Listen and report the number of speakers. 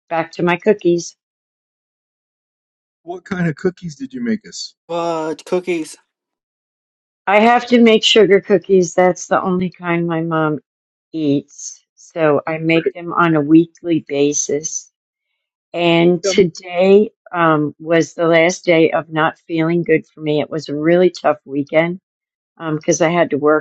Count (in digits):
3